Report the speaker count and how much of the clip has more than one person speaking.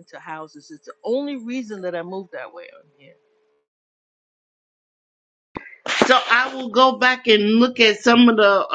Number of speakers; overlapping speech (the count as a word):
two, no overlap